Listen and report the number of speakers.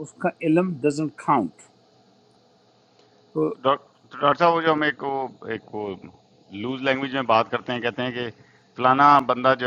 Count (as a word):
two